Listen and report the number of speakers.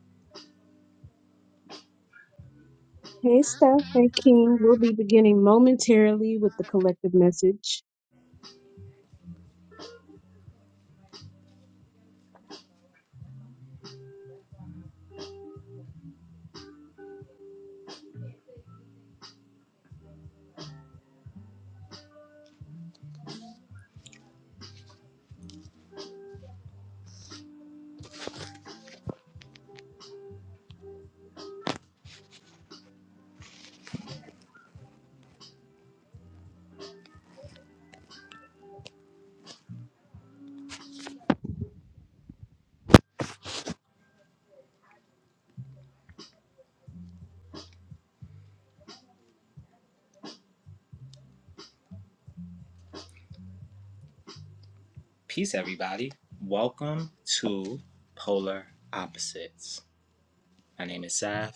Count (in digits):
2